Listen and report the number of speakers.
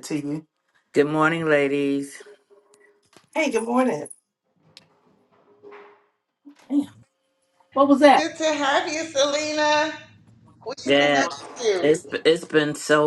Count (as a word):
three